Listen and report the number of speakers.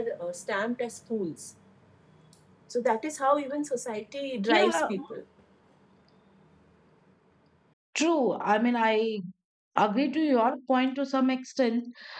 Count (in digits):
2